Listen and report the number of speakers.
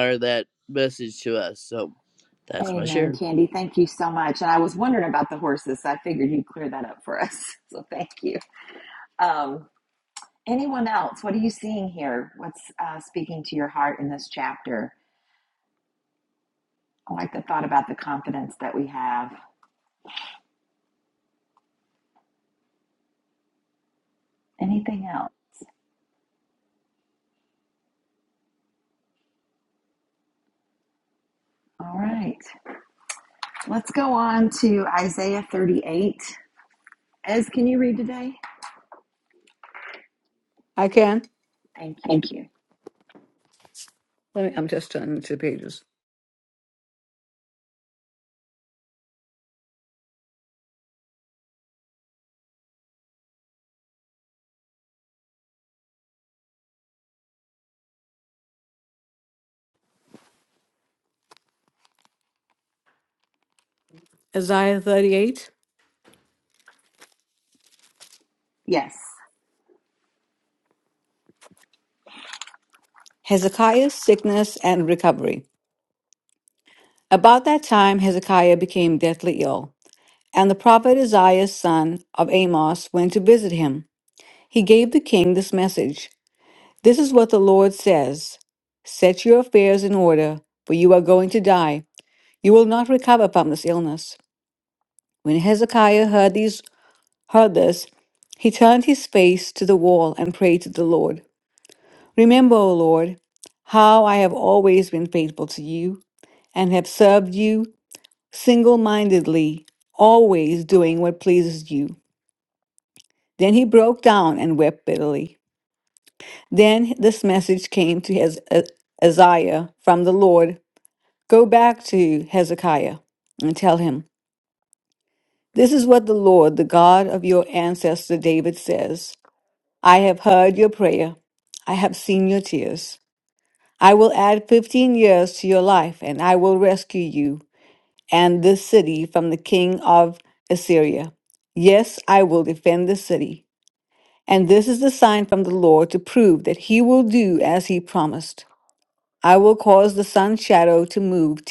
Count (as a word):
three